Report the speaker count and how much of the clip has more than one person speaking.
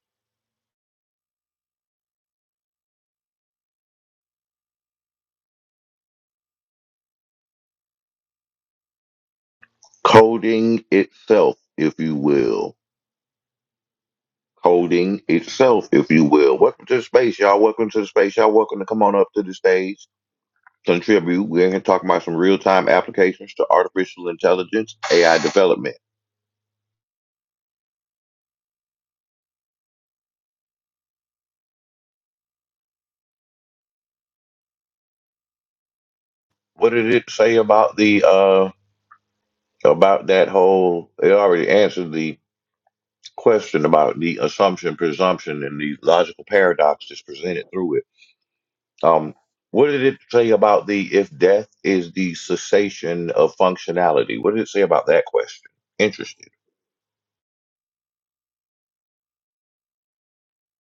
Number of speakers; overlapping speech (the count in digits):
1, no overlap